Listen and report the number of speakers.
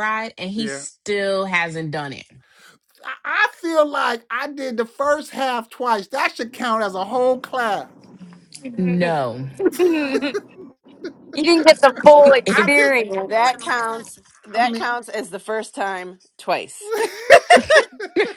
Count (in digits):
4